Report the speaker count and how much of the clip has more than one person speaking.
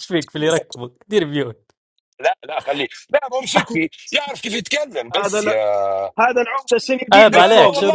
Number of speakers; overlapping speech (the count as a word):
three, about 23%